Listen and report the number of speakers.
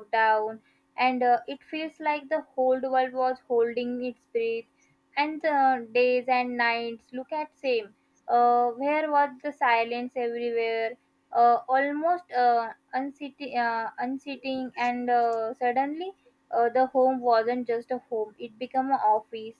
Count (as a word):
one